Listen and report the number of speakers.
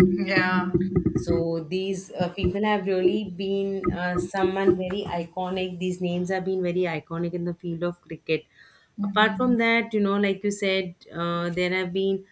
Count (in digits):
2